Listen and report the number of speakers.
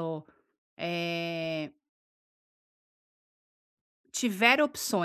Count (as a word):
one